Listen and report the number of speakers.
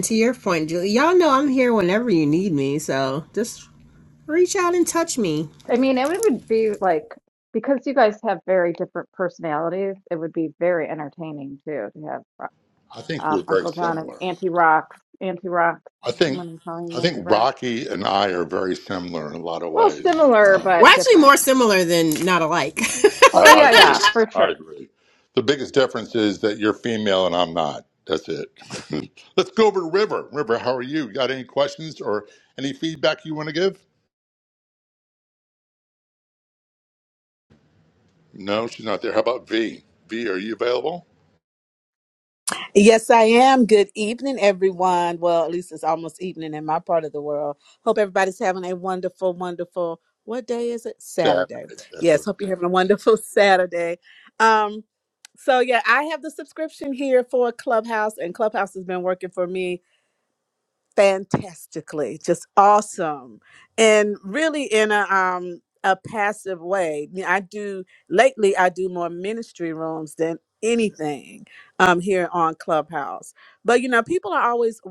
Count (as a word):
four